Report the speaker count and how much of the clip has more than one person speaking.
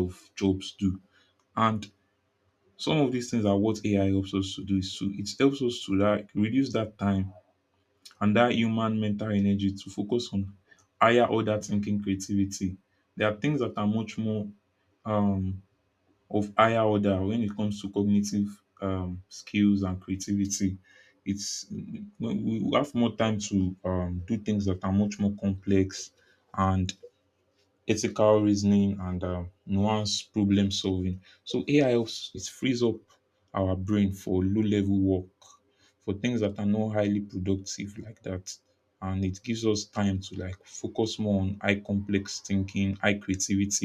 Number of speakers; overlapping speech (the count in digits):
1, no overlap